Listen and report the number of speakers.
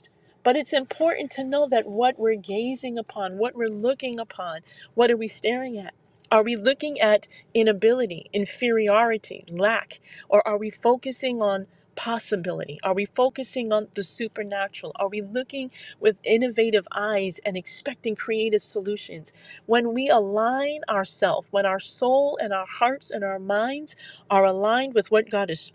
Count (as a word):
one